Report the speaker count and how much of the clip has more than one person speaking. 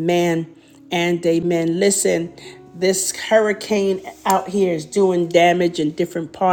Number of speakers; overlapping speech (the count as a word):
one, no overlap